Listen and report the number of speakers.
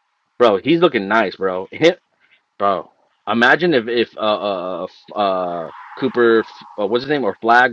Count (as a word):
one